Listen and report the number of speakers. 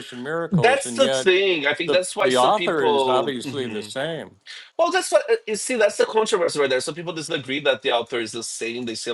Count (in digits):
2